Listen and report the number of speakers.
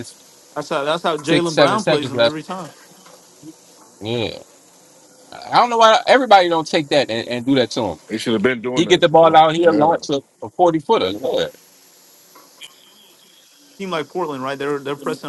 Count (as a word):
three